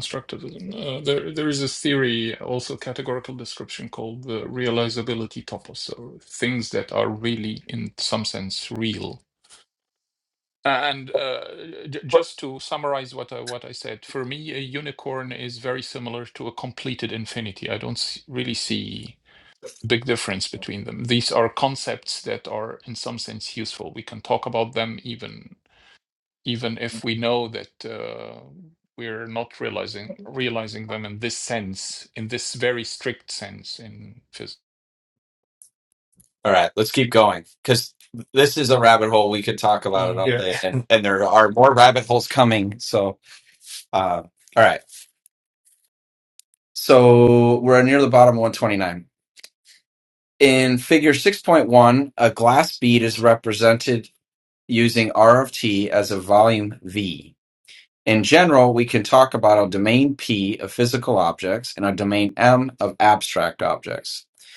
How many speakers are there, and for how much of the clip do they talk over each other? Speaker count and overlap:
2, under 1%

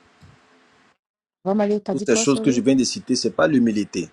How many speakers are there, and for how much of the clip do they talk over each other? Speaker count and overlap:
2, about 17%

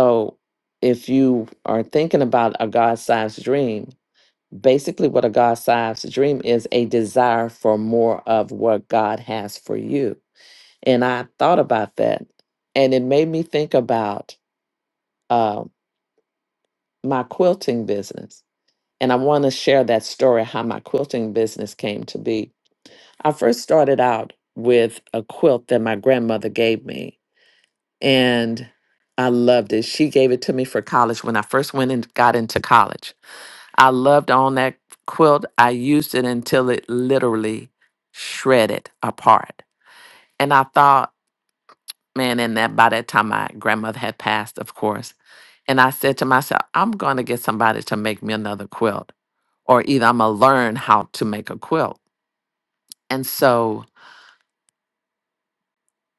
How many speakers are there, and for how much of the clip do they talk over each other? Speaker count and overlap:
1, no overlap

